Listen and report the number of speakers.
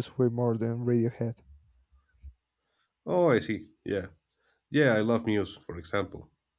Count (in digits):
2